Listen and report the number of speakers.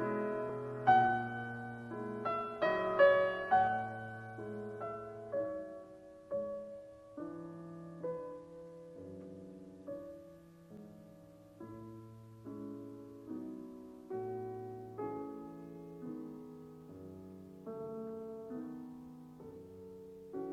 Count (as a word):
zero